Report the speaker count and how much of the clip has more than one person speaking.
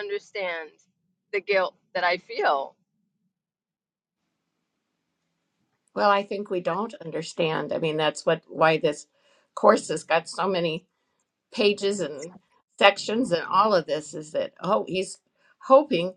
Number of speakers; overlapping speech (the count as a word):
two, no overlap